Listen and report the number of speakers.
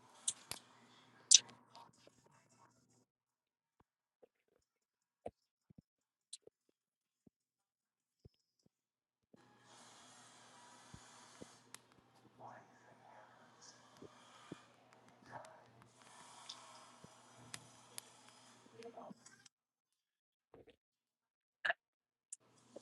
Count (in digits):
0